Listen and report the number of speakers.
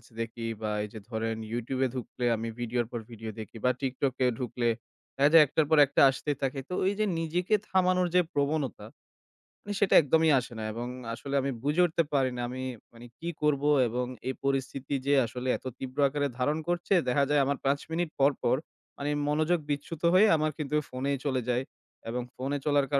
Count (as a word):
one